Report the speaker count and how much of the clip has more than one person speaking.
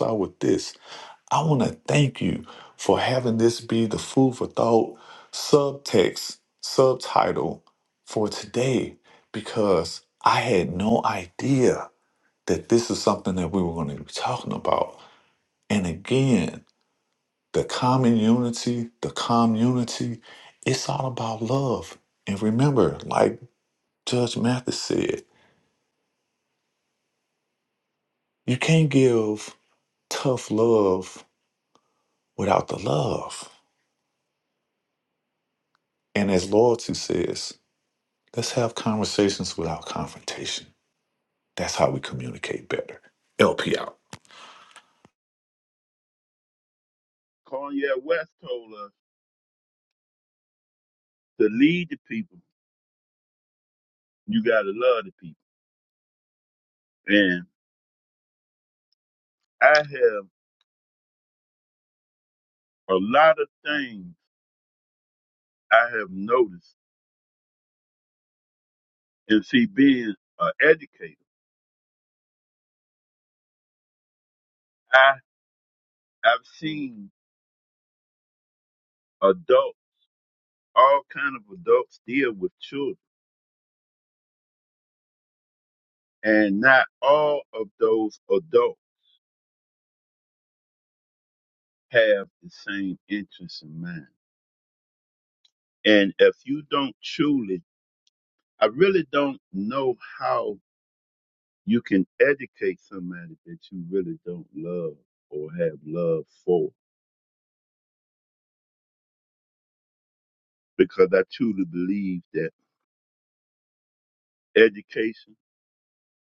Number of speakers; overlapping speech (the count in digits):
2, no overlap